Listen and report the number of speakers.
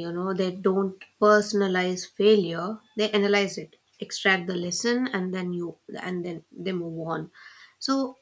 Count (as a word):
one